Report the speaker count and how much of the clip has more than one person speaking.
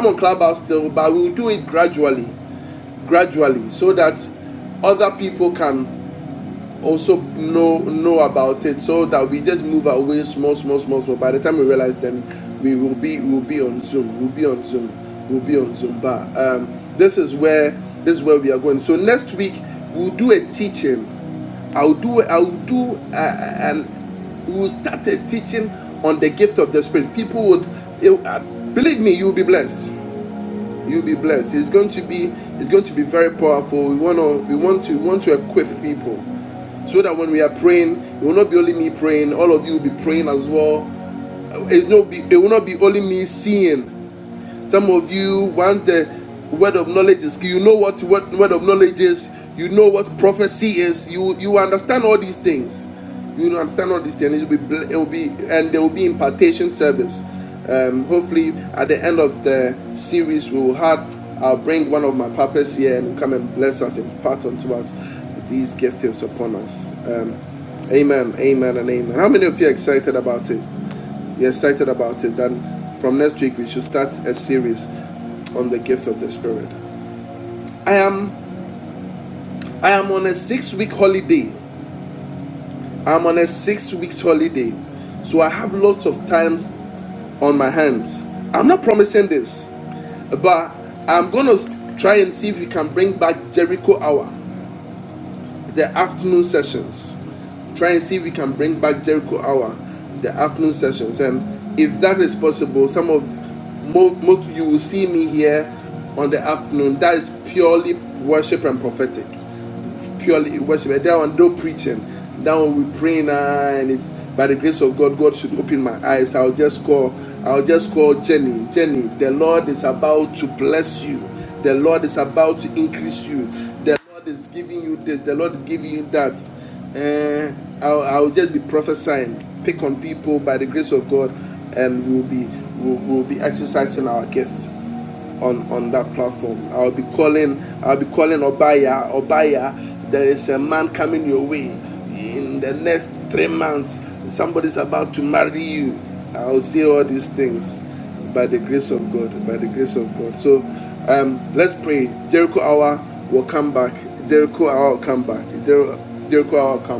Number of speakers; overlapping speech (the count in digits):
1, no overlap